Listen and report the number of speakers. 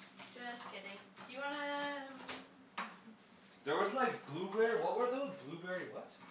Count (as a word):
two